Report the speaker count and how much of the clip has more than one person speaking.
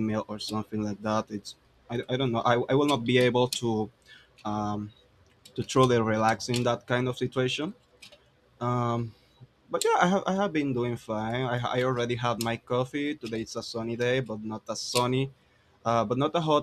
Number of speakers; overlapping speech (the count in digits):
1, no overlap